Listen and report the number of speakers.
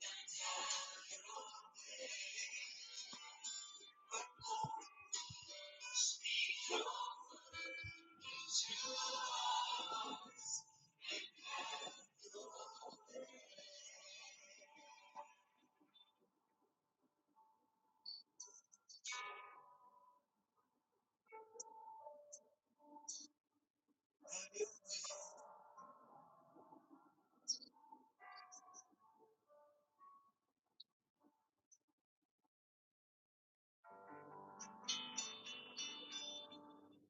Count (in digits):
0